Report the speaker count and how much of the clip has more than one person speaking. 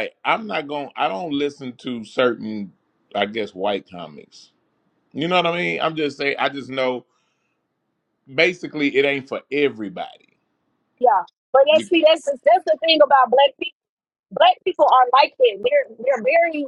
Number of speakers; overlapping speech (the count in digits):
2, about 1%